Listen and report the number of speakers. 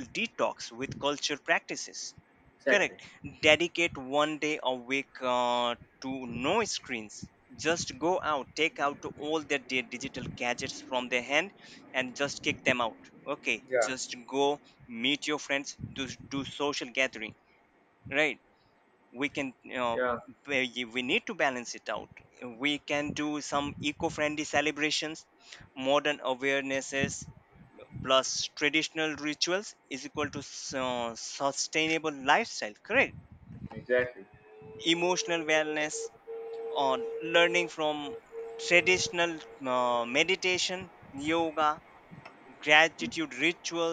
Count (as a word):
two